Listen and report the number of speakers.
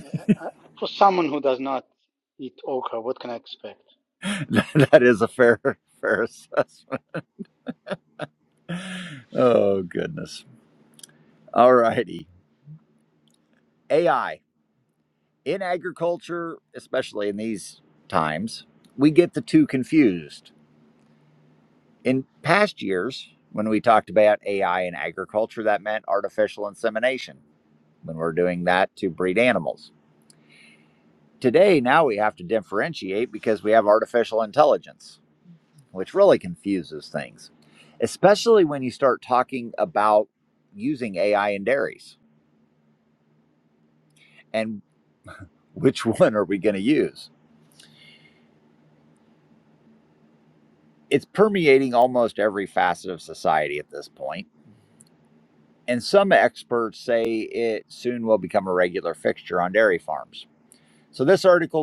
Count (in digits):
2